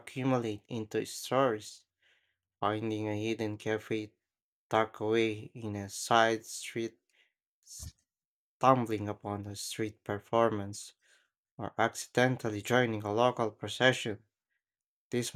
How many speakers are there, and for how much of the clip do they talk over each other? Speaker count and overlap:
one, no overlap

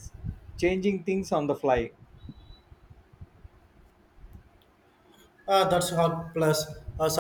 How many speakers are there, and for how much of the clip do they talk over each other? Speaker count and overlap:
two, no overlap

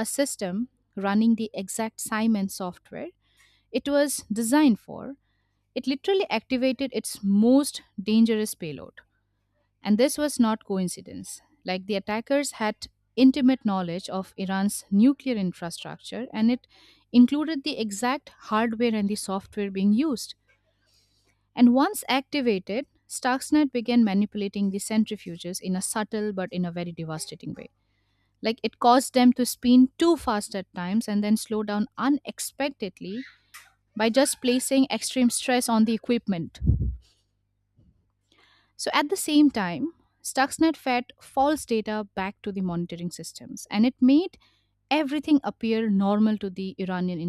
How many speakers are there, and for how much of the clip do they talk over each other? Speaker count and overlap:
one, no overlap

